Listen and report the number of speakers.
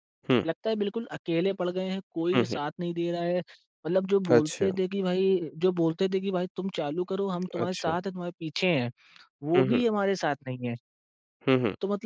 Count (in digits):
2